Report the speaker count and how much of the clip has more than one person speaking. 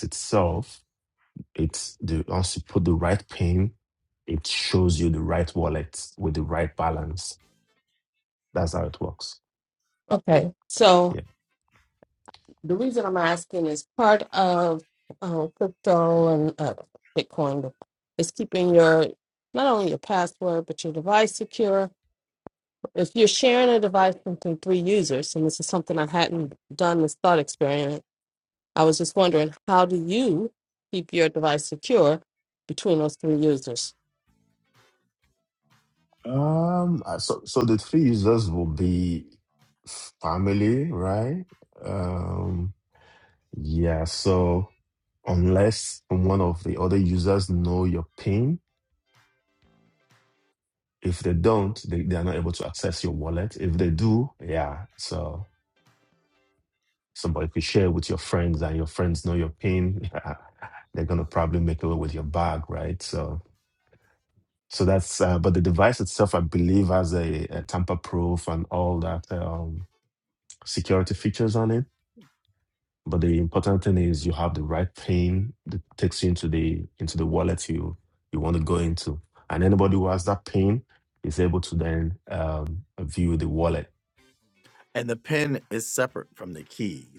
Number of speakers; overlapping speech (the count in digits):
3, under 1%